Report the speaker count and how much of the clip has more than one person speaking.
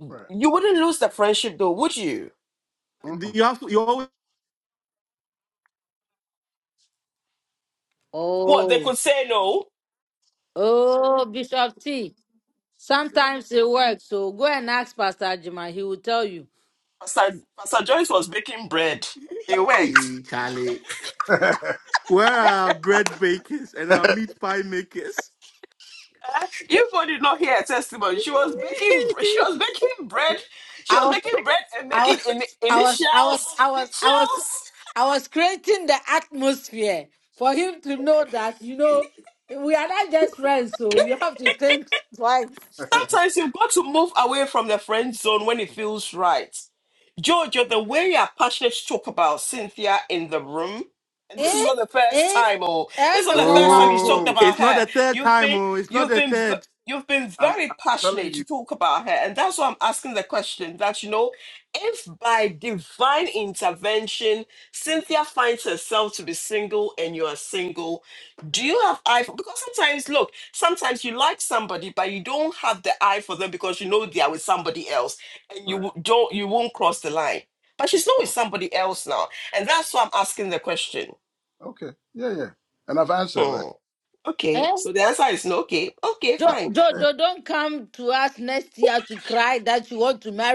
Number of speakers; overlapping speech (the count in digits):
4, about 10%